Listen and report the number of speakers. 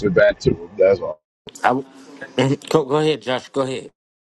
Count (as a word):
two